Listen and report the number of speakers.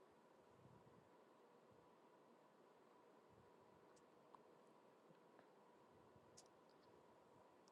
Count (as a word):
zero